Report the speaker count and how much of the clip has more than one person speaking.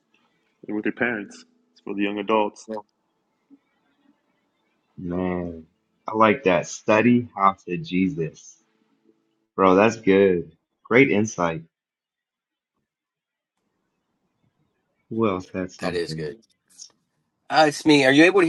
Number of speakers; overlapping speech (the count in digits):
3, about 2%